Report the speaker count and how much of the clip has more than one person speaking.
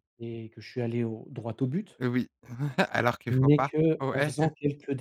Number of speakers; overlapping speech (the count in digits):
2, about 21%